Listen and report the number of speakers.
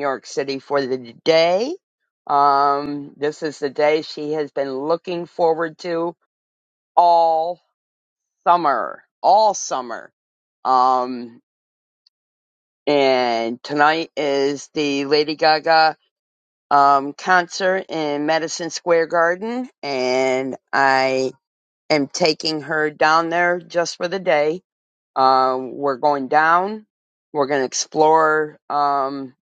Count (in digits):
1